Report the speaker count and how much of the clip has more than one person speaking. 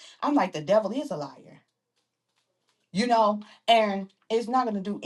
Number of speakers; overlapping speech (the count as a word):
one, no overlap